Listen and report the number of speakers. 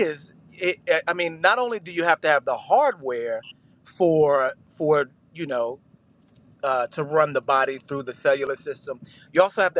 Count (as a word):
one